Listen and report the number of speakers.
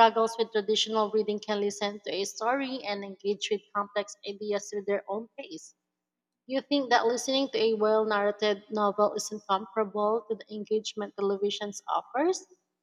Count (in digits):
1